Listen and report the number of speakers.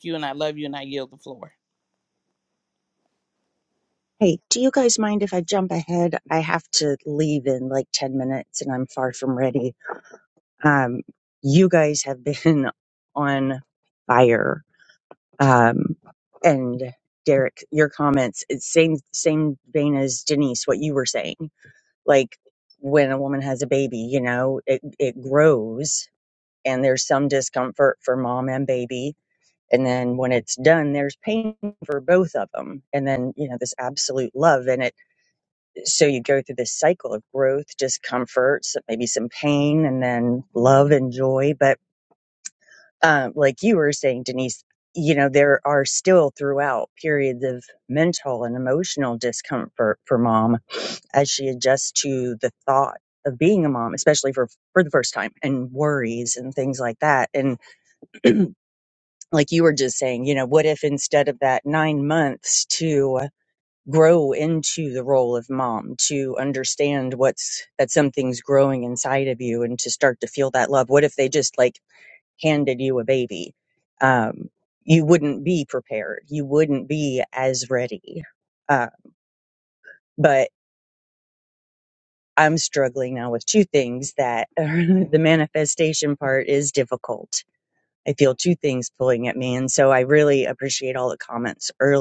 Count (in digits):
2